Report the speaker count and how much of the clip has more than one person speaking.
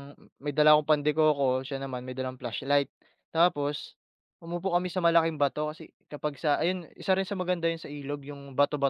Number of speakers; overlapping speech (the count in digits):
1, no overlap